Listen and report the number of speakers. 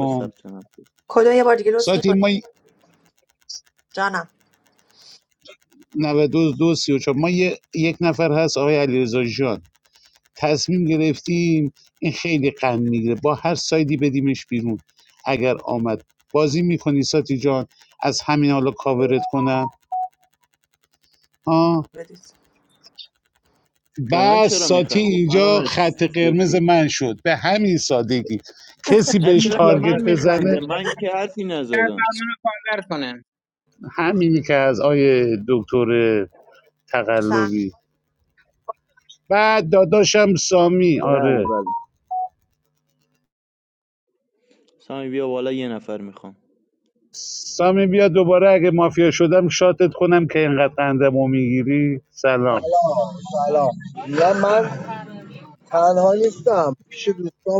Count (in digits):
5